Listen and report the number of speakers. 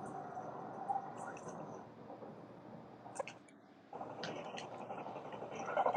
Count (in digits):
0